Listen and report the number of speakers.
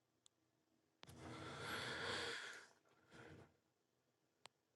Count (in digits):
0